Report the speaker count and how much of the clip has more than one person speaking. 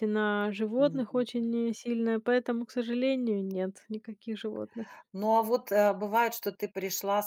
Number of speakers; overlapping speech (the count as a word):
two, about 6%